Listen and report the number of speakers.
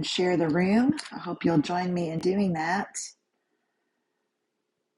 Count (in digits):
1